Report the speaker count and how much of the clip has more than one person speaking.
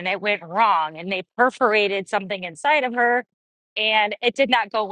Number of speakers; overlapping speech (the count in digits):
1, no overlap